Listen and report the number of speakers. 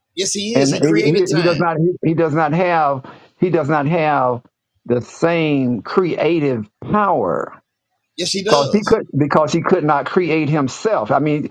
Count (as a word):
two